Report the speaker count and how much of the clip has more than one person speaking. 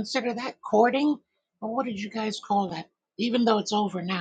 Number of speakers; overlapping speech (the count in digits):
1, no overlap